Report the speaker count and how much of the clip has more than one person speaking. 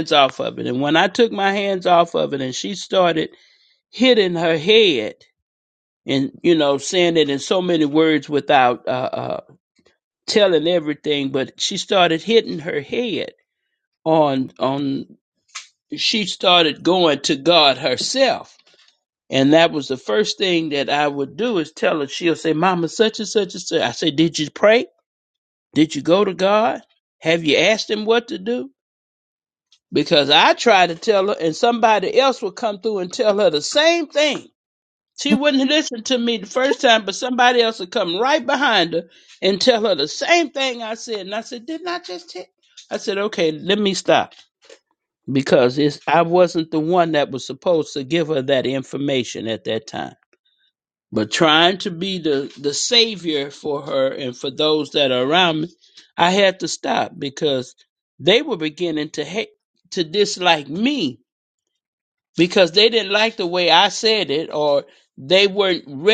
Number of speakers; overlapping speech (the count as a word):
one, no overlap